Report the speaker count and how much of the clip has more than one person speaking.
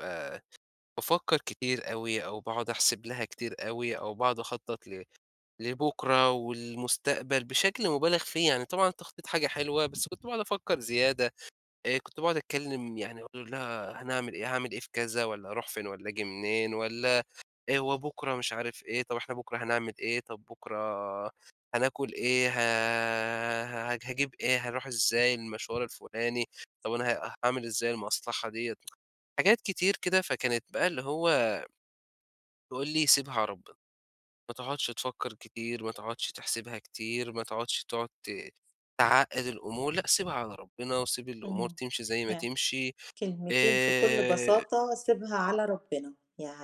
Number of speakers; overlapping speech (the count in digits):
2, about 3%